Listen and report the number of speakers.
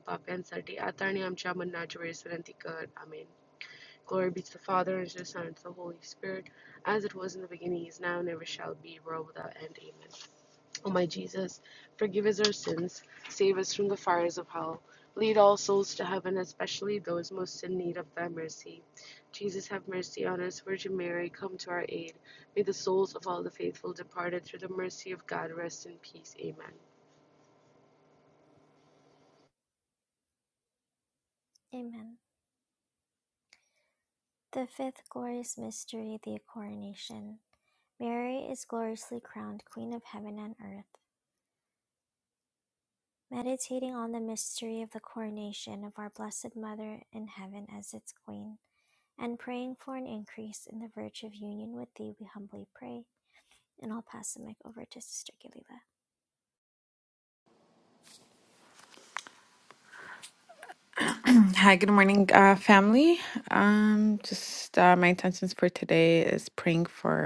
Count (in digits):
3